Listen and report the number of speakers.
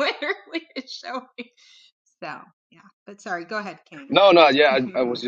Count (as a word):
two